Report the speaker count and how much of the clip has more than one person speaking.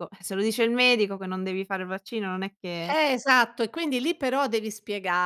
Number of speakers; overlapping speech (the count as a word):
two, about 1%